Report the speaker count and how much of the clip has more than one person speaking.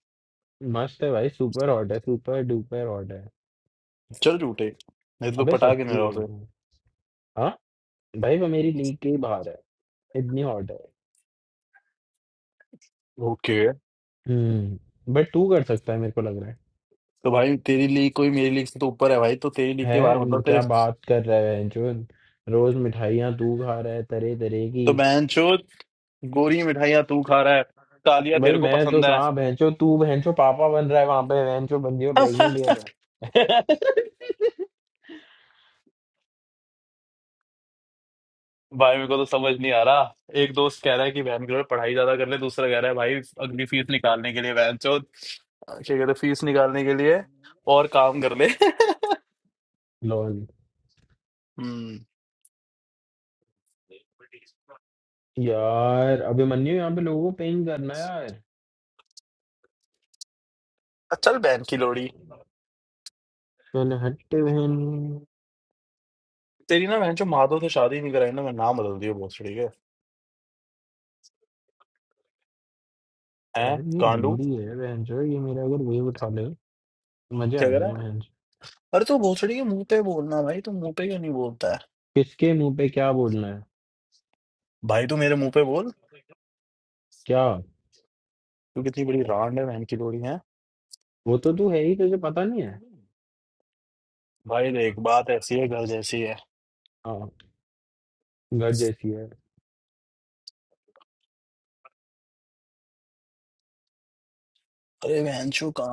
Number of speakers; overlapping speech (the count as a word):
two, about 4%